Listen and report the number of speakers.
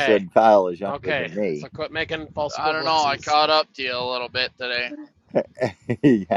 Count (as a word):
three